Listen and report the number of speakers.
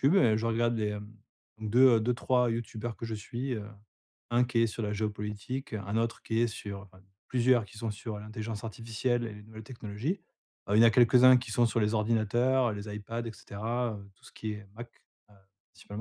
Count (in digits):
1